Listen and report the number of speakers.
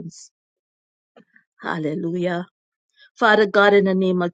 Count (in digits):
1